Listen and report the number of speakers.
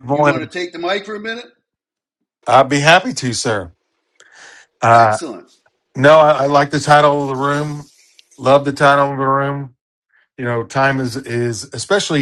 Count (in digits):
2